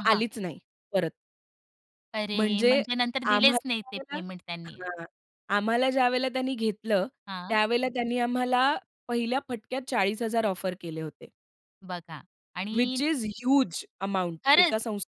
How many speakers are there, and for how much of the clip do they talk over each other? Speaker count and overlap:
2, about 17%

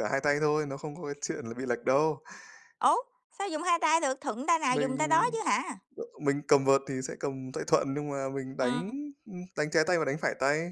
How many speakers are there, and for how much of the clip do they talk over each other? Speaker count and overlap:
2, about 6%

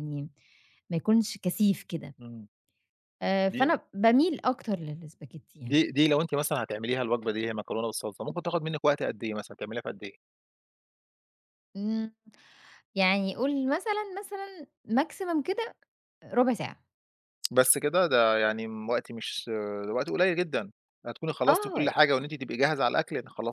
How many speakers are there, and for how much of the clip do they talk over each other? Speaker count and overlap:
2, about 3%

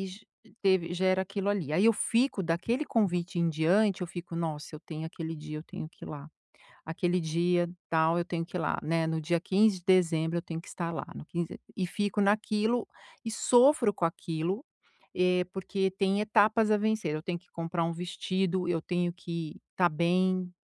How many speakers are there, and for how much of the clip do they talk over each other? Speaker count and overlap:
1, no overlap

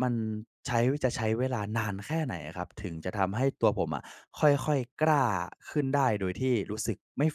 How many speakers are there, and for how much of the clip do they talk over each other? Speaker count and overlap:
1, no overlap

